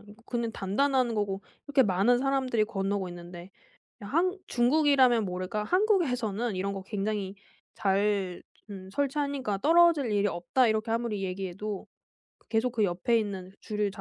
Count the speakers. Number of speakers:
1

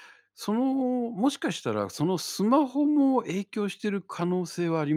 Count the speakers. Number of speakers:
1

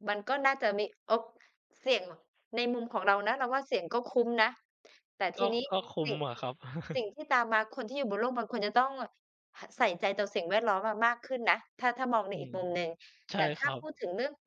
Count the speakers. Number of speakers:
2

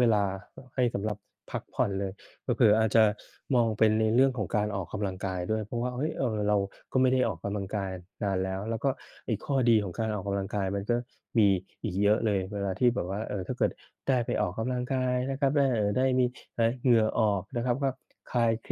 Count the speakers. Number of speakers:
1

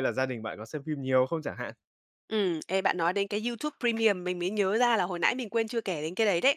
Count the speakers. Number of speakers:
2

